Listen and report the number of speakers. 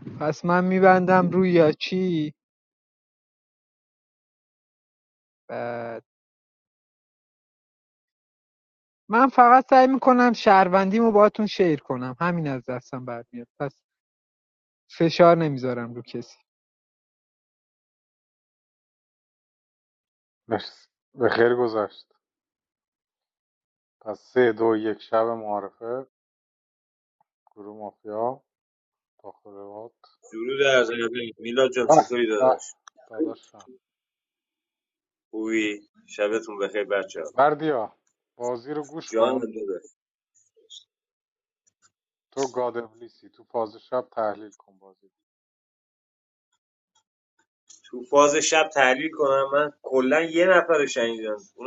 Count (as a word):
three